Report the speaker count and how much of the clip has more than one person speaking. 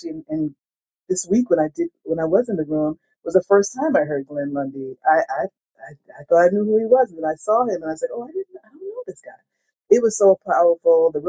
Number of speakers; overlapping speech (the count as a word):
one, no overlap